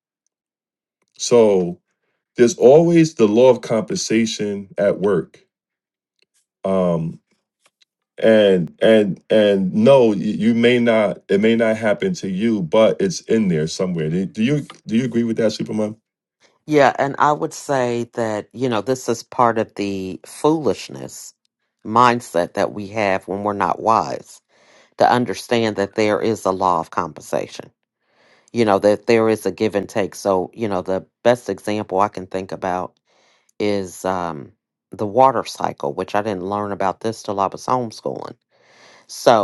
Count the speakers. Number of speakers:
two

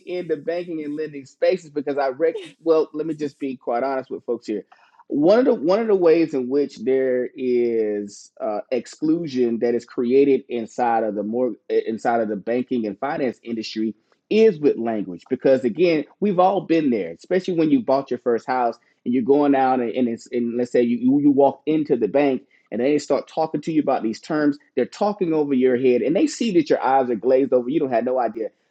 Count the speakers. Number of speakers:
one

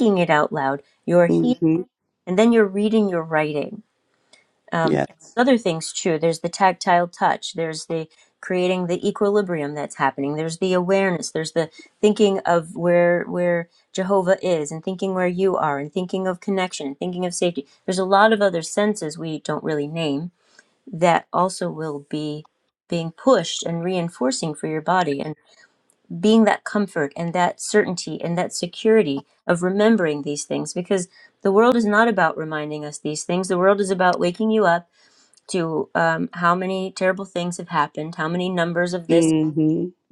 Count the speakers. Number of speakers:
two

